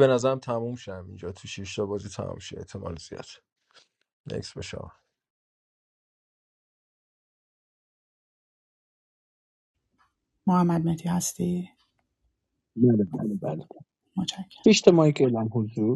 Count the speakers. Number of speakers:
three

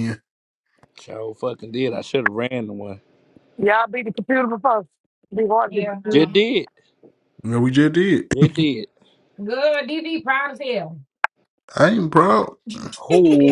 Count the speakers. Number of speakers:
four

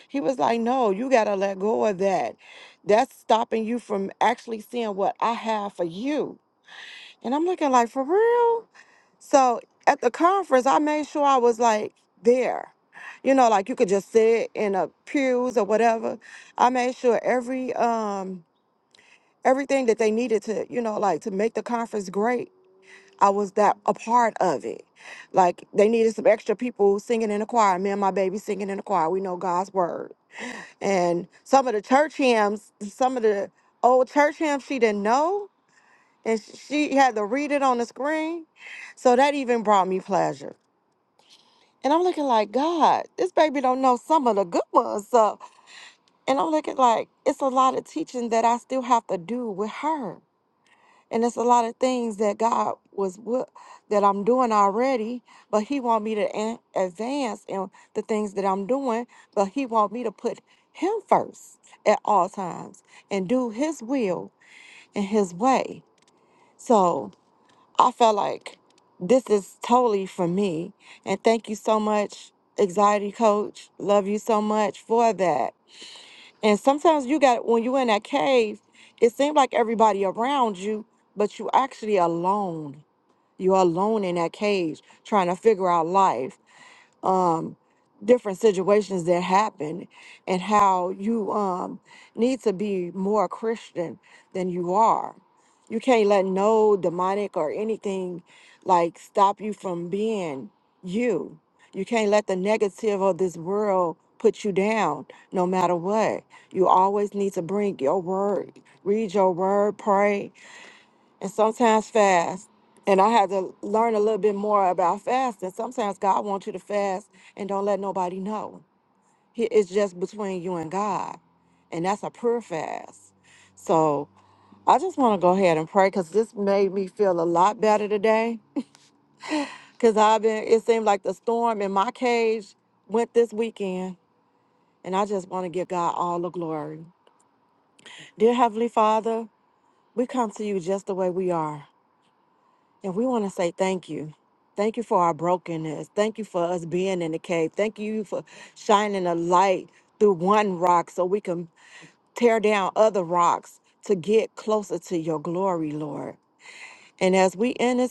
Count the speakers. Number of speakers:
one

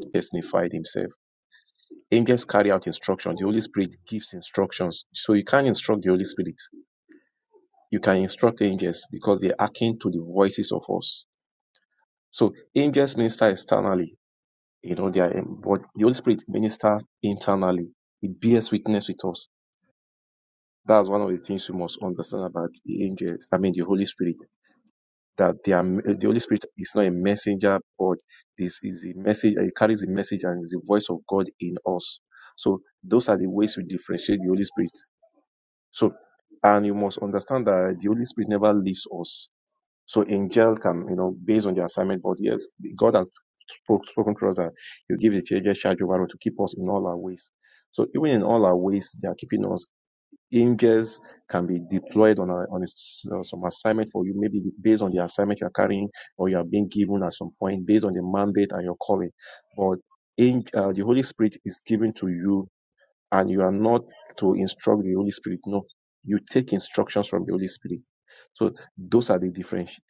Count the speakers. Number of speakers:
one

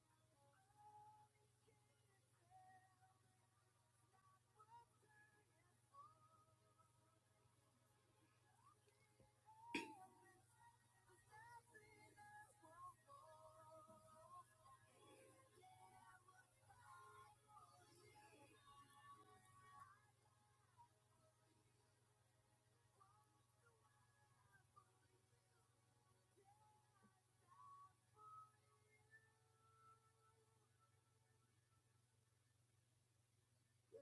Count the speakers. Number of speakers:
zero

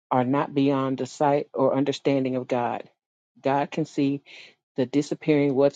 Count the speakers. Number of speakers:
one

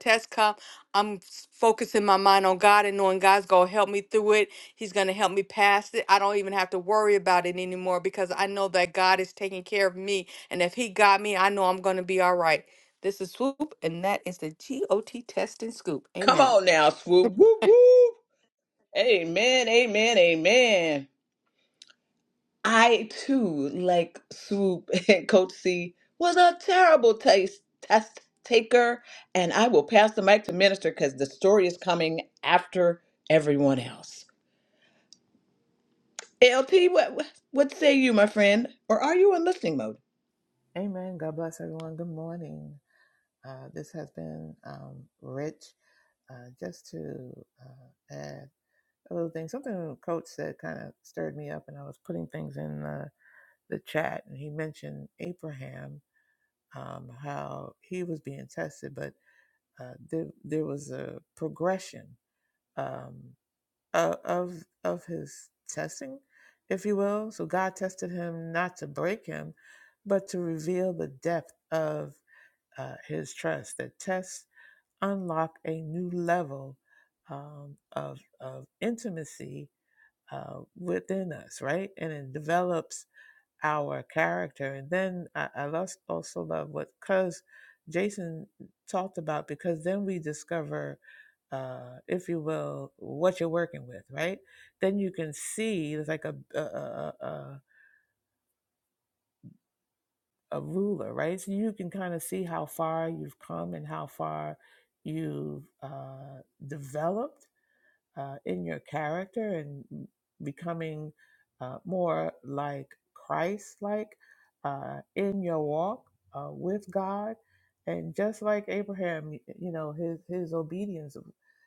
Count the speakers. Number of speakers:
three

